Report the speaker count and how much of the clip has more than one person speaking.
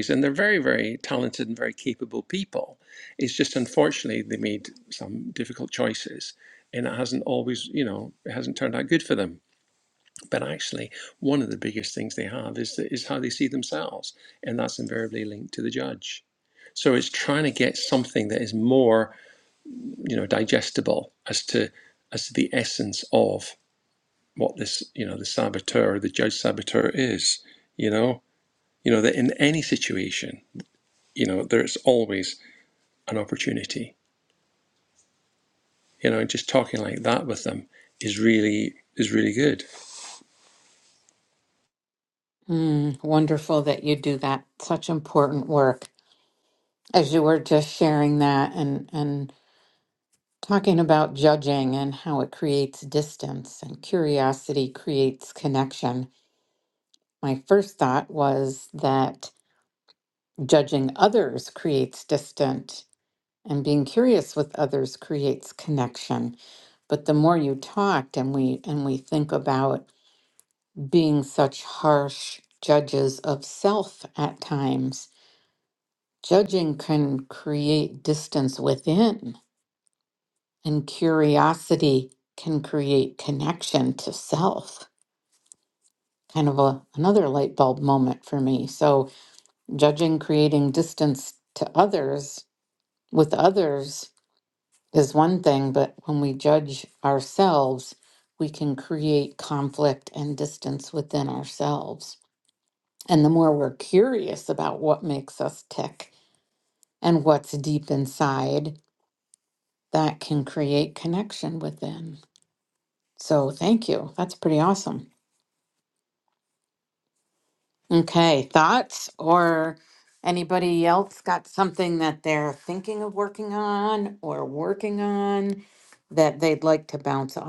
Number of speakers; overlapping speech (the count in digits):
2, no overlap